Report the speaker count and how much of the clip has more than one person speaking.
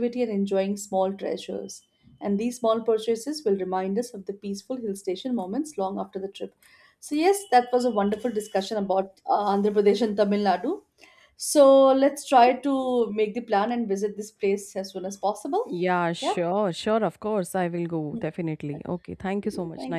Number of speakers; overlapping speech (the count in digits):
2, about 4%